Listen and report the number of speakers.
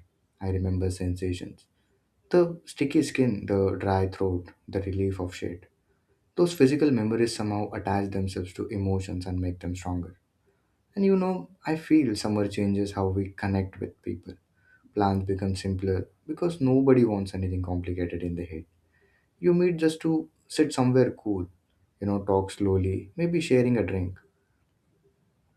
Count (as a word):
one